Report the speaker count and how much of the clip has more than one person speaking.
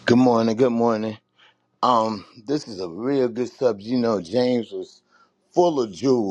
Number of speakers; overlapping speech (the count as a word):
one, no overlap